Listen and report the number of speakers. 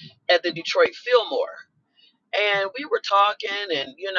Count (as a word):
one